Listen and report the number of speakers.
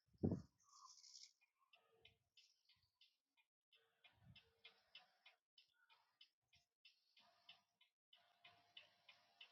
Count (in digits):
0